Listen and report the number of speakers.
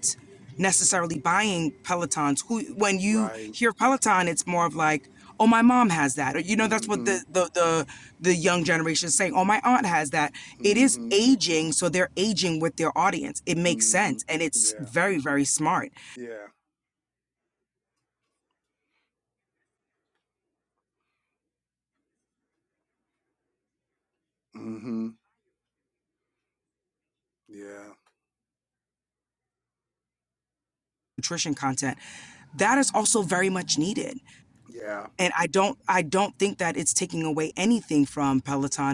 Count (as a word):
two